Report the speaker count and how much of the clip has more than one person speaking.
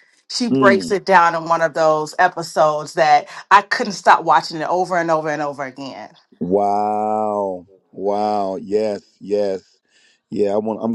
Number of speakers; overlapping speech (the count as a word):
two, about 3%